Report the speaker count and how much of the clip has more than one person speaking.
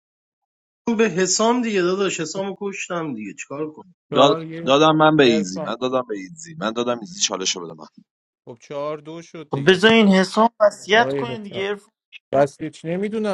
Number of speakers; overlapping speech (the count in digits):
4, about 16%